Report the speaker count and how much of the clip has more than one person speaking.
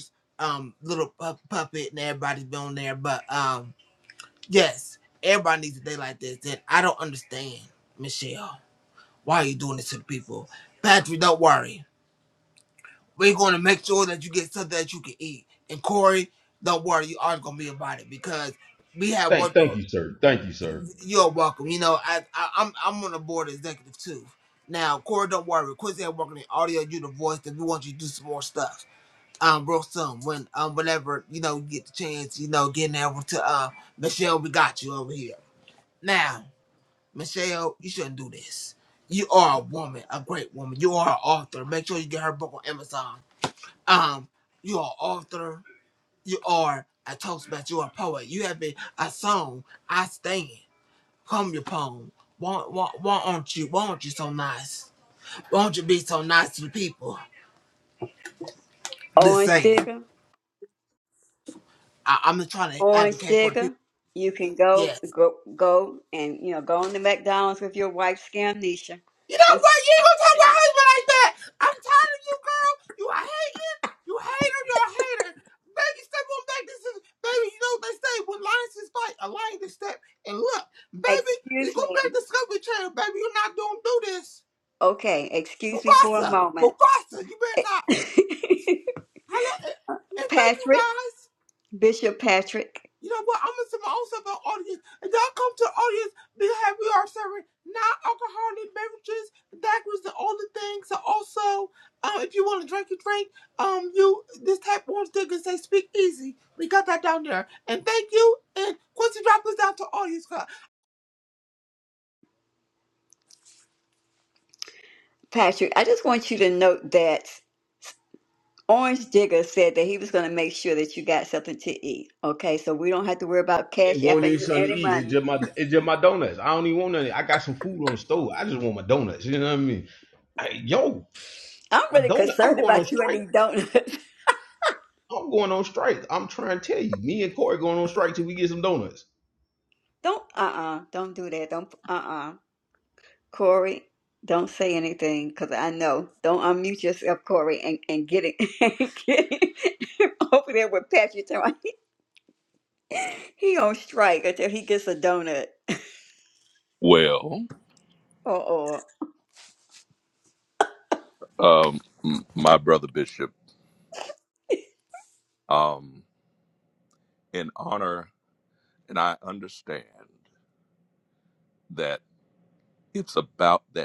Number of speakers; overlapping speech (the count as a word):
four, about 4%